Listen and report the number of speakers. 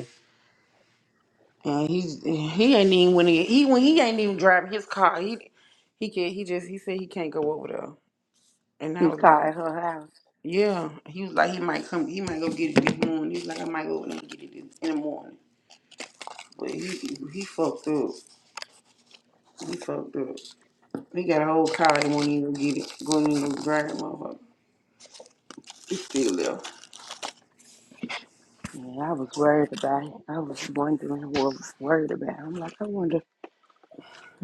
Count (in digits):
2